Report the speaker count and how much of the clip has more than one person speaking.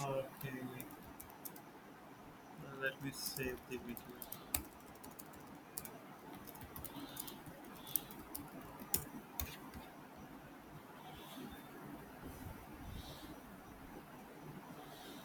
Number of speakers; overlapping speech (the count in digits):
1, no overlap